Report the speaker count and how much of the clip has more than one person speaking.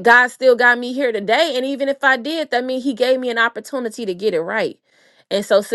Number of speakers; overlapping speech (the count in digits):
1, no overlap